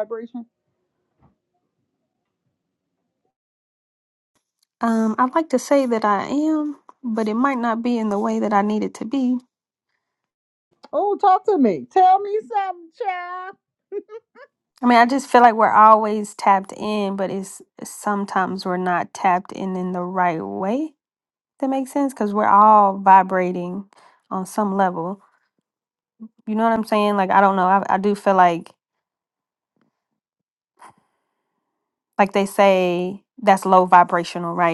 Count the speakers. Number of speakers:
2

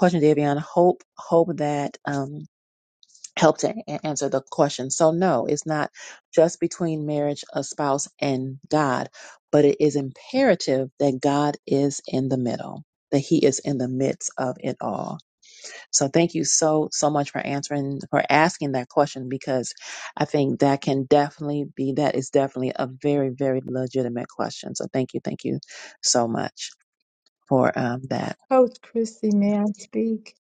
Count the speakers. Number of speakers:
2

